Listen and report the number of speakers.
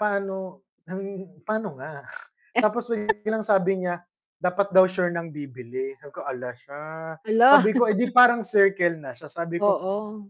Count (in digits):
2